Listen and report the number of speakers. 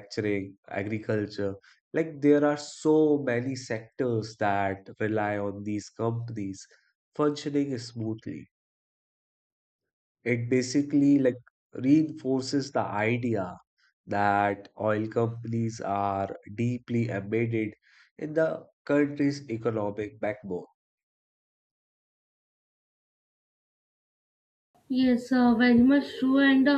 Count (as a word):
two